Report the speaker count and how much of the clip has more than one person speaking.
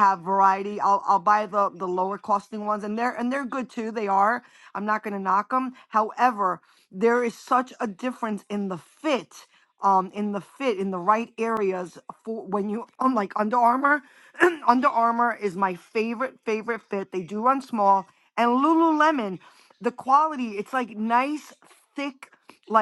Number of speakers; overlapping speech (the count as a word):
one, no overlap